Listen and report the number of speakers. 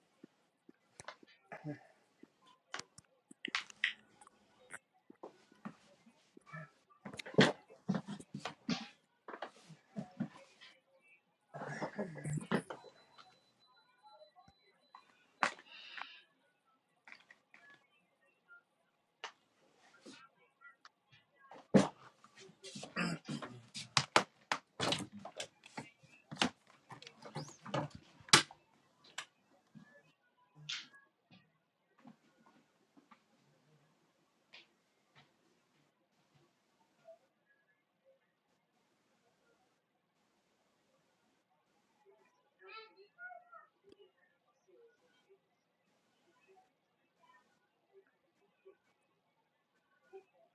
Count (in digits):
0